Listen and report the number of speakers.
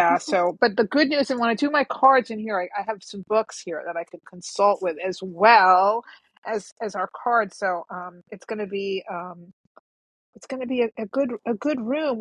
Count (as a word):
one